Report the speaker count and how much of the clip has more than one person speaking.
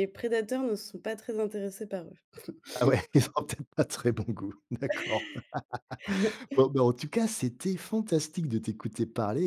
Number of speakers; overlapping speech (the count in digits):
2, no overlap